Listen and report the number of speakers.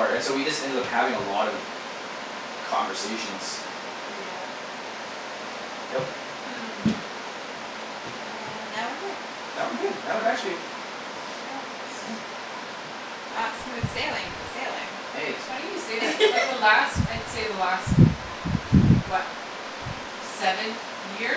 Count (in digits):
3